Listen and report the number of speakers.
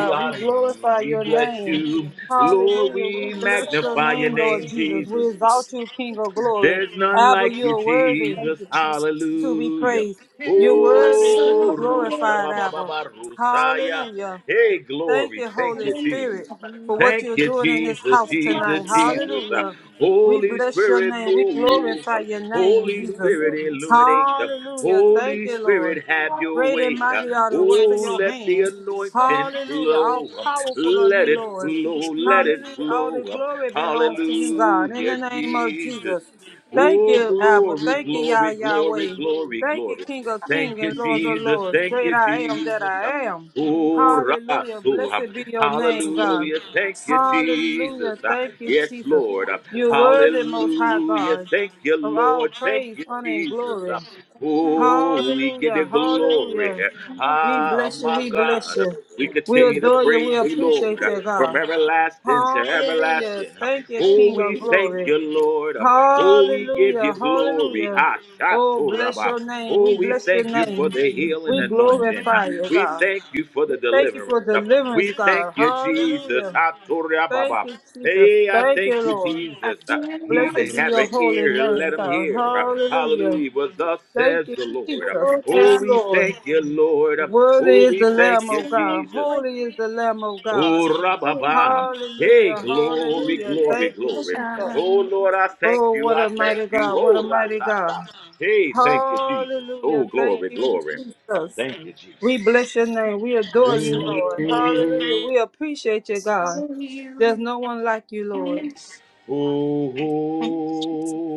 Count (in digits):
3